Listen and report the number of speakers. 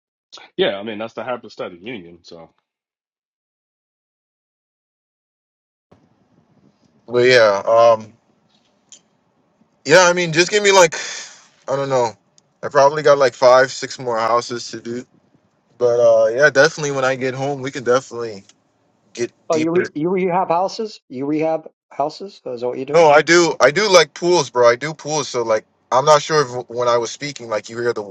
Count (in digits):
3